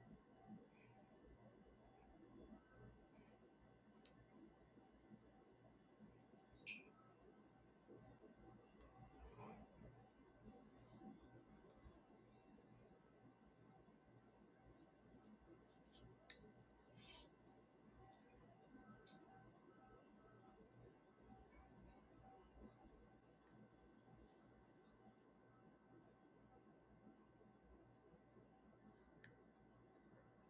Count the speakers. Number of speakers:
0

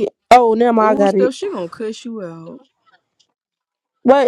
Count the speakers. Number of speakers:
2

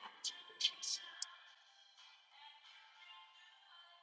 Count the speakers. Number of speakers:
0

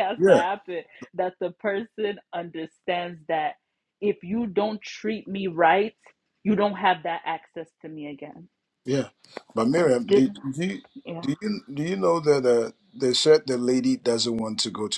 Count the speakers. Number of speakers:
2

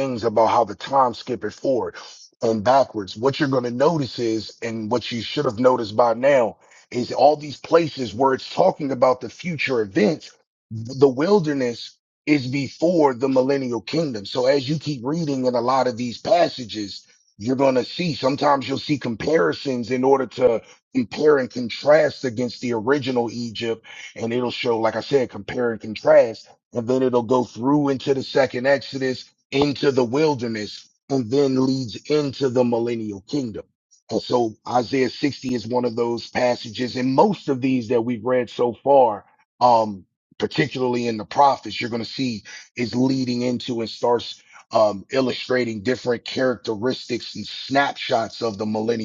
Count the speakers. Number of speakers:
1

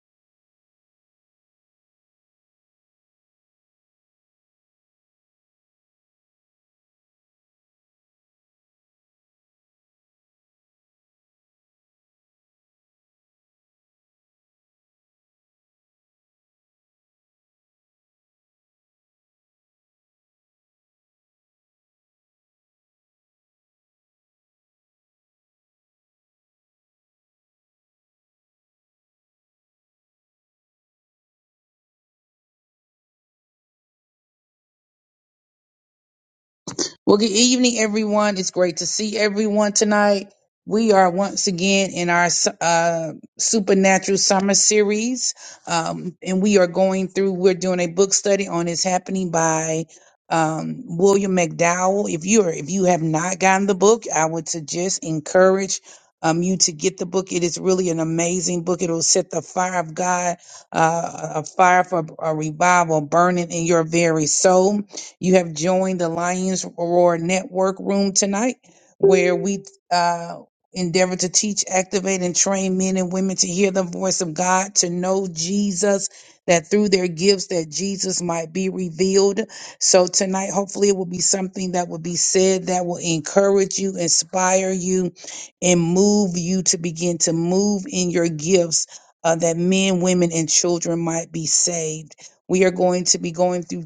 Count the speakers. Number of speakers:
1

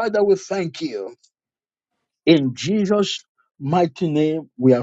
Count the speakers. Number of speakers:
1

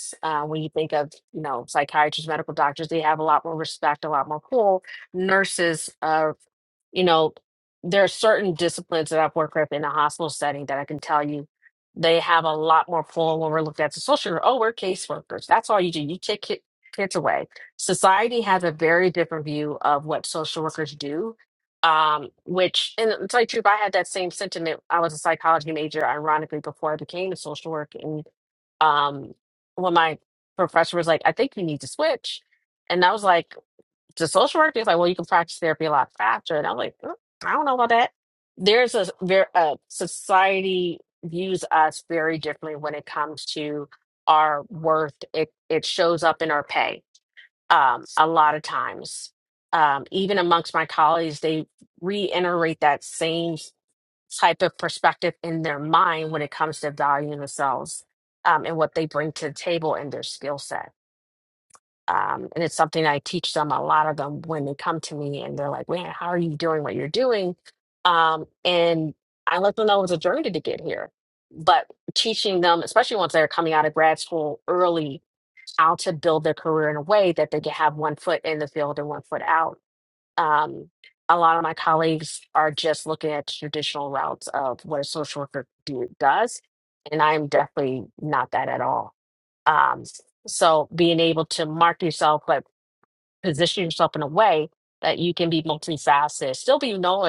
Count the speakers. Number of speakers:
1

